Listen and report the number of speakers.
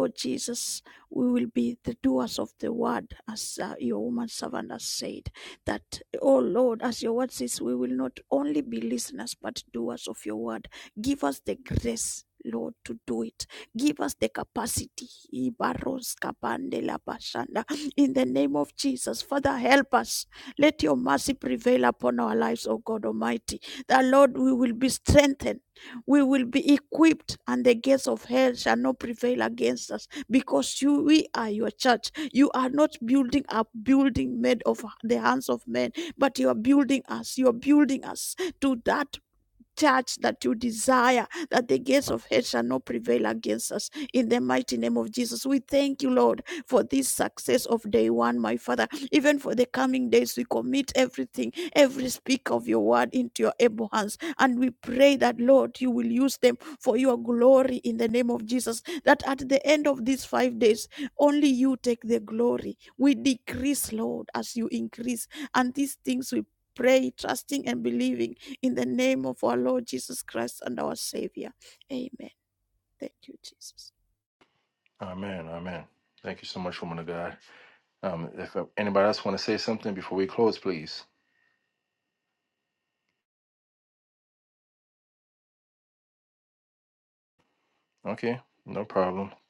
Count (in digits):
2